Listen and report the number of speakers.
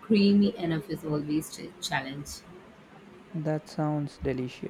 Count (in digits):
2